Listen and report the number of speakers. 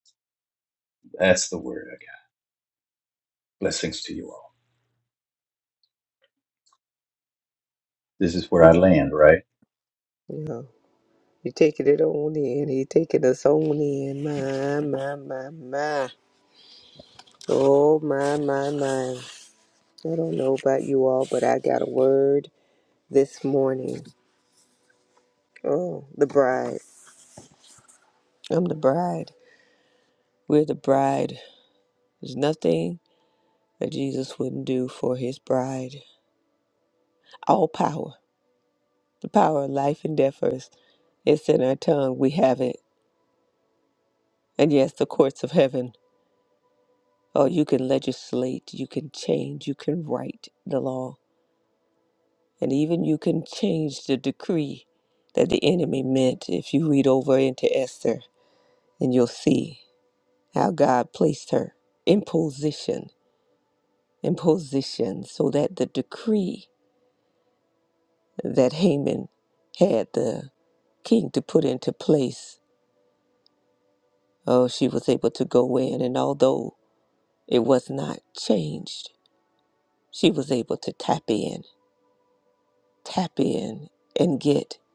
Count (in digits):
2